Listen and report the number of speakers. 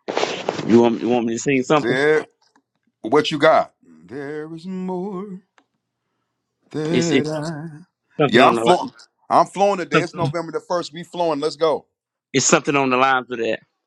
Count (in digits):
2